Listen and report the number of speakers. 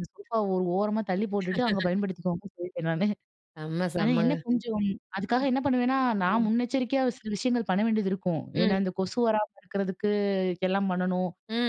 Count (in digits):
2